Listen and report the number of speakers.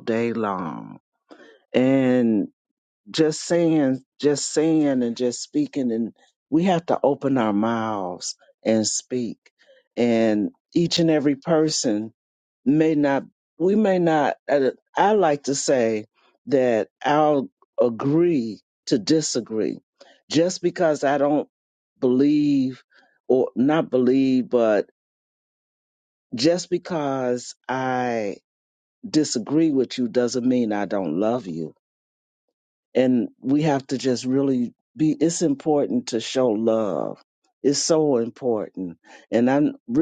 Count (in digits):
1